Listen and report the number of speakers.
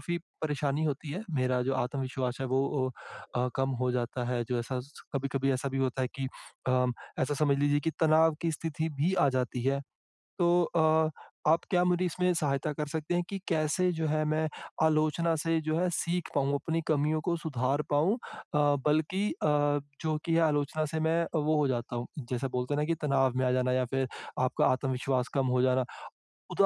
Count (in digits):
1